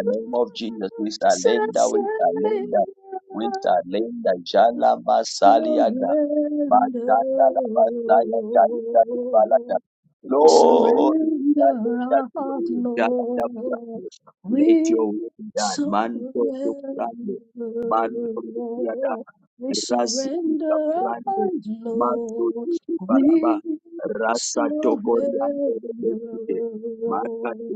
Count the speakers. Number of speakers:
2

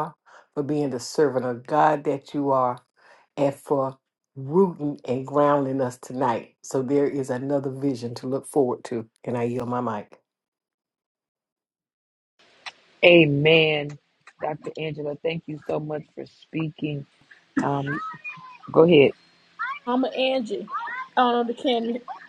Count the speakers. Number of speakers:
3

